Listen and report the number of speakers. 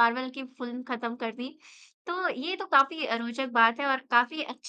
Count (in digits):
1